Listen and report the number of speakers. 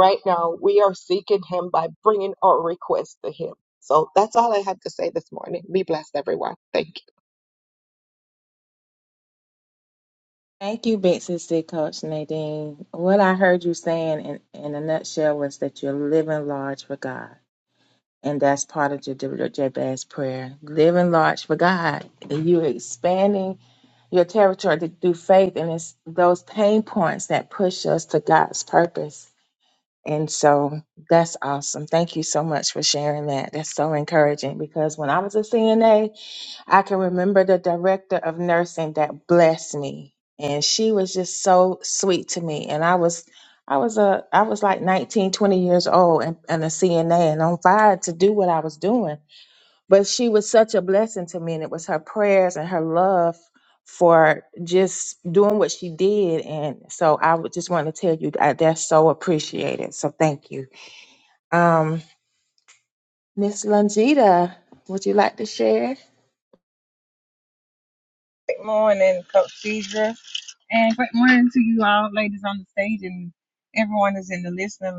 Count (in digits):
3